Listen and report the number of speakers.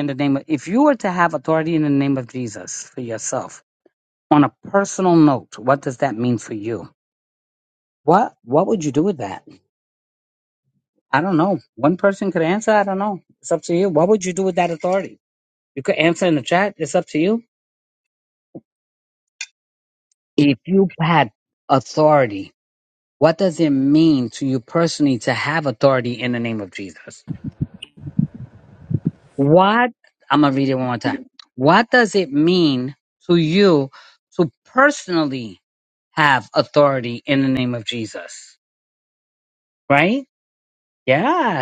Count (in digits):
1